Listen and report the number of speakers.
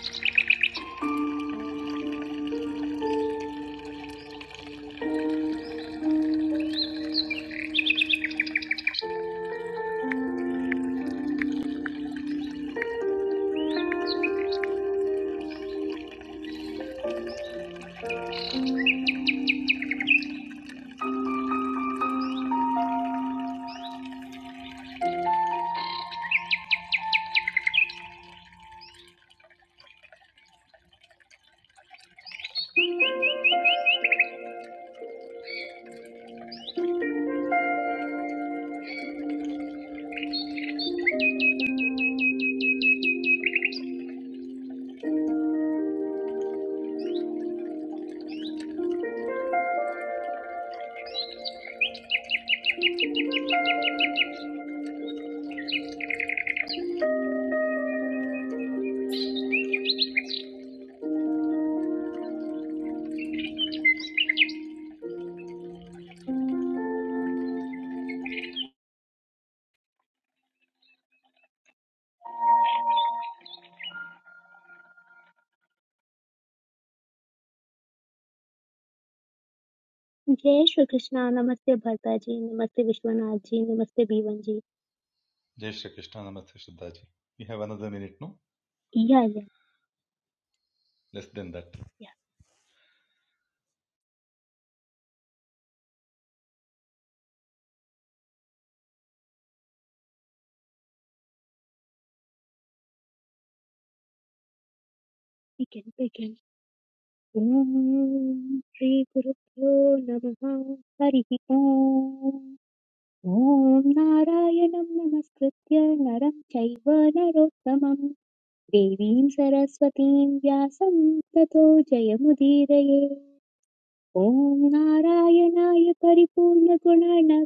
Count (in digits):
2